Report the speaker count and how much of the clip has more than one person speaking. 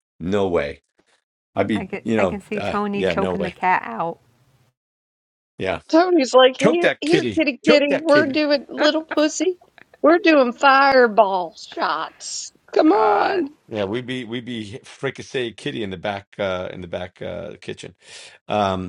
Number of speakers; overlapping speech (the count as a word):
three, about 22%